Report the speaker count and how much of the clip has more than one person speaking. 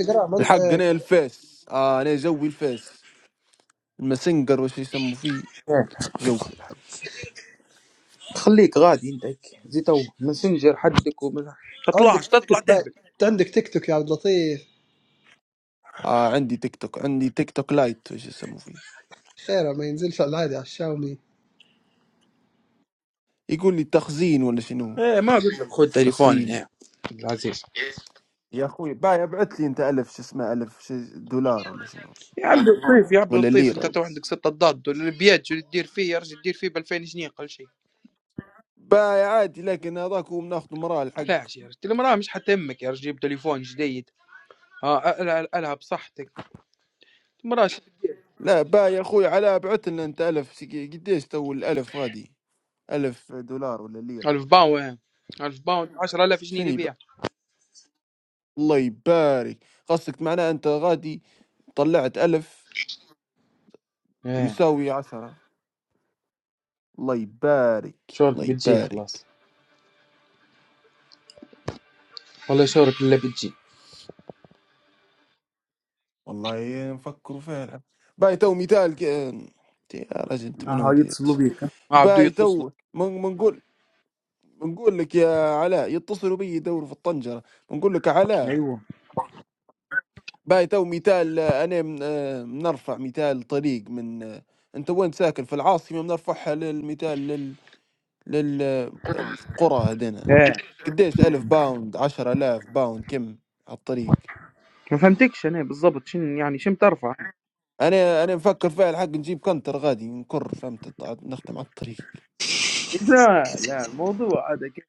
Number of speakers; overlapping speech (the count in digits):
3, about 5%